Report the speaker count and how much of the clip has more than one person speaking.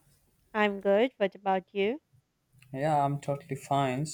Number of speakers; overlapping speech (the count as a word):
two, no overlap